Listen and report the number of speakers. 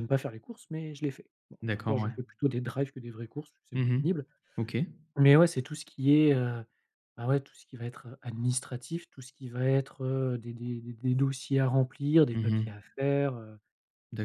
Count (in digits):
2